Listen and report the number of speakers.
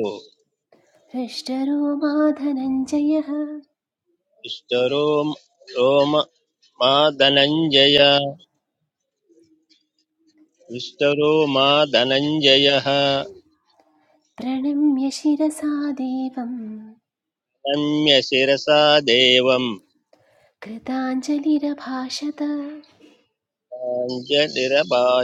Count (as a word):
two